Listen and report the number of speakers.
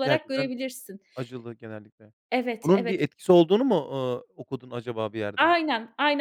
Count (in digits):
2